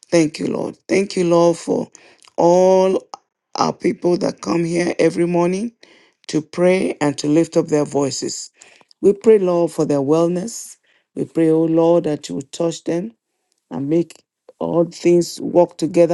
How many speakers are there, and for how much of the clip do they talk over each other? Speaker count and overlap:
one, no overlap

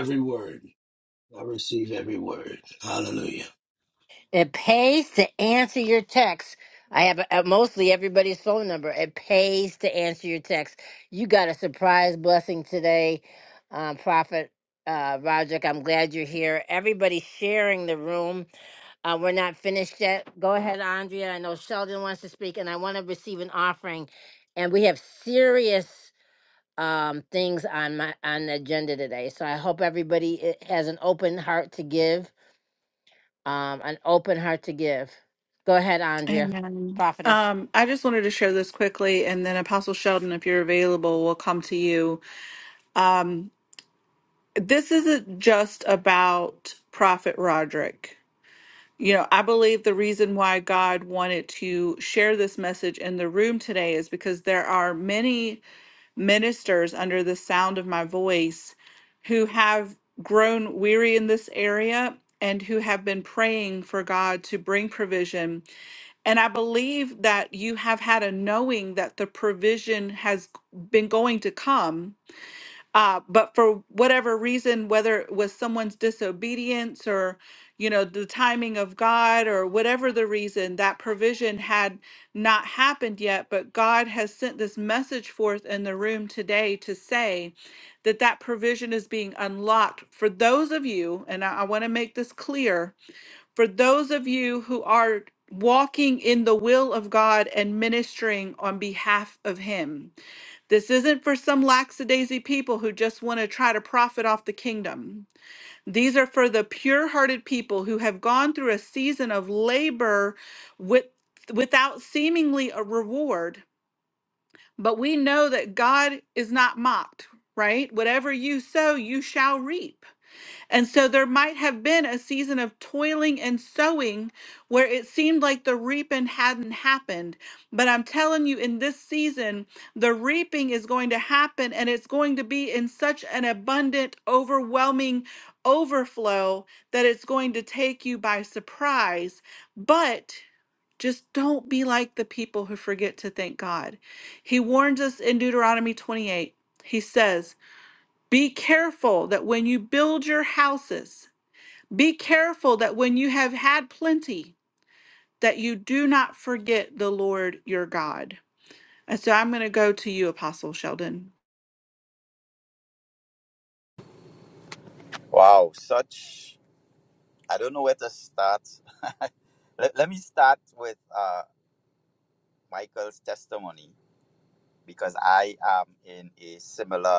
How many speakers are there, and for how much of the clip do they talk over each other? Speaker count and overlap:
four, under 1%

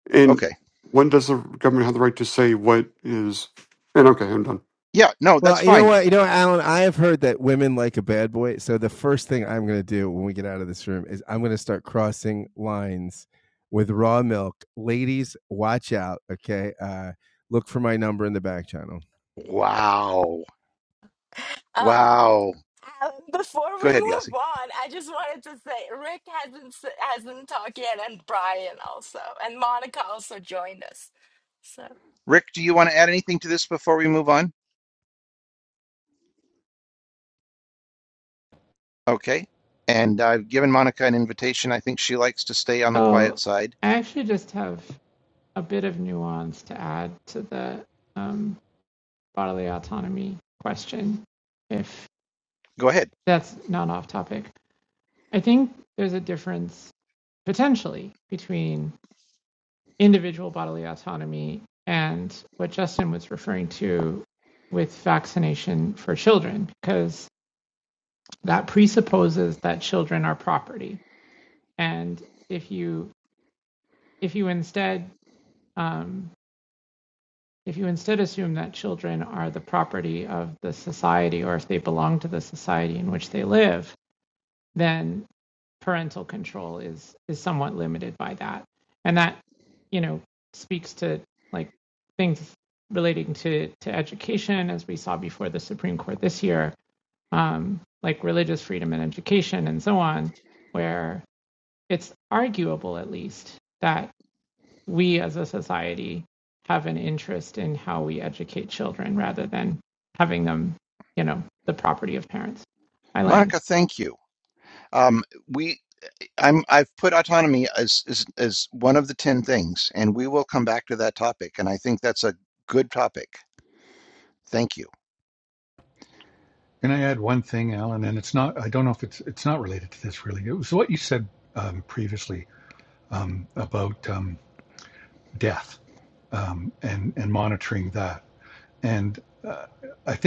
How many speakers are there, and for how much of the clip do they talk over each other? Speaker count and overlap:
six, about 1%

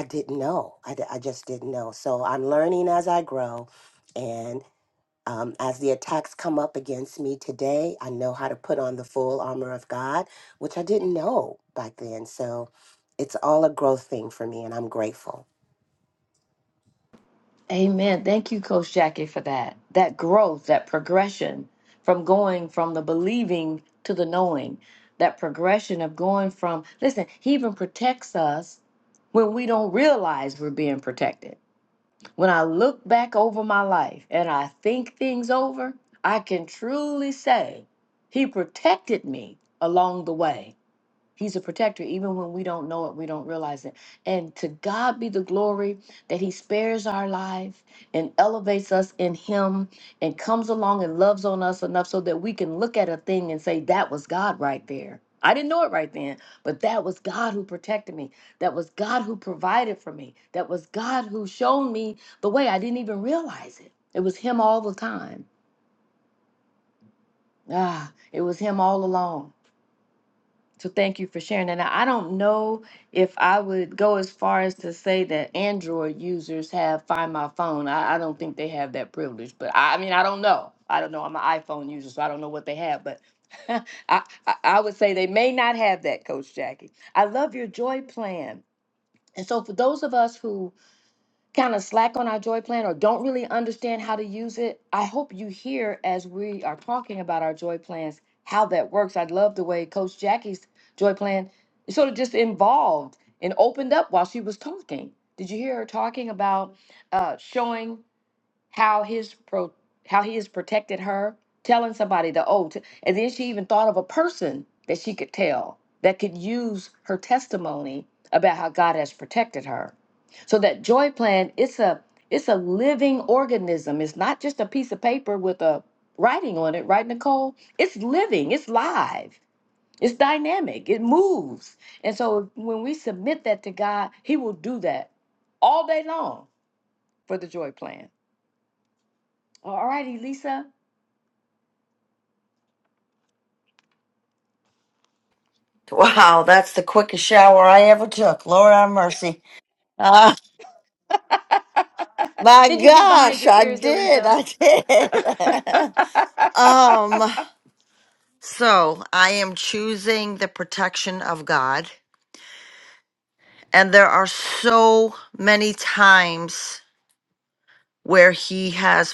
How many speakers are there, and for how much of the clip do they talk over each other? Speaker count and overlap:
three, about 1%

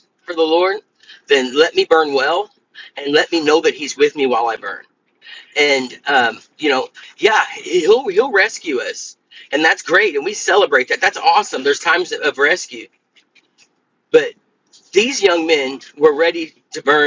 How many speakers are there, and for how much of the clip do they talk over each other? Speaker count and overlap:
one, no overlap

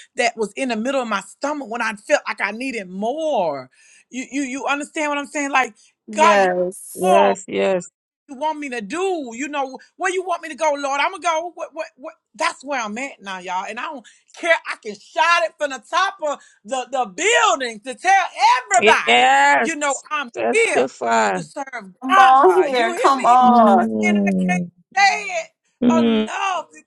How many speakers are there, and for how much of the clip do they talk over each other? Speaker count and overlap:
three, about 16%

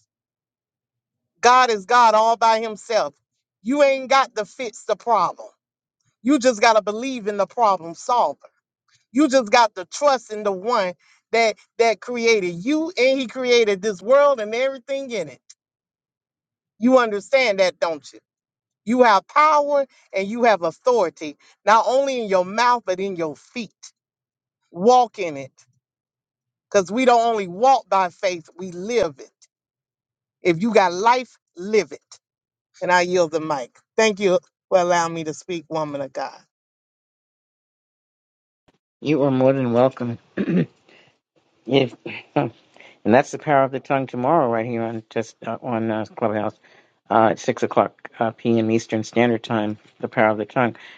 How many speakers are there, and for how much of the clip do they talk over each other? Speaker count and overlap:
two, no overlap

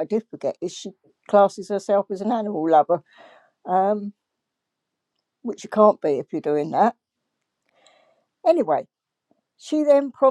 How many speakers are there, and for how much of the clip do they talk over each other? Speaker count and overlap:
one, no overlap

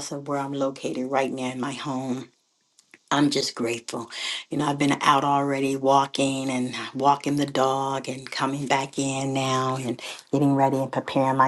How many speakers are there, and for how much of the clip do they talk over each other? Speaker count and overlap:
one, no overlap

